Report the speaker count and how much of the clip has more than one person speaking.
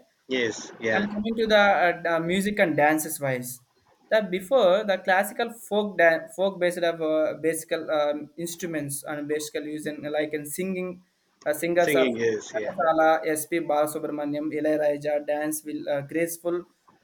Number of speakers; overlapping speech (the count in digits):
2, about 4%